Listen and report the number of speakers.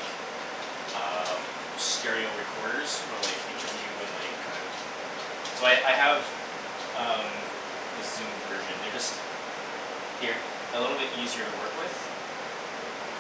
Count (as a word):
one